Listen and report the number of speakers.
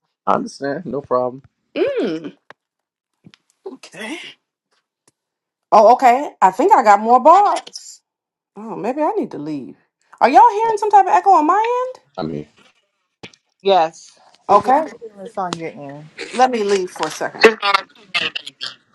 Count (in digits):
3